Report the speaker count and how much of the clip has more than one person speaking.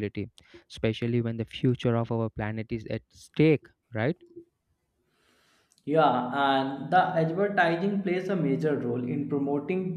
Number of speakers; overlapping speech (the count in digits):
2, no overlap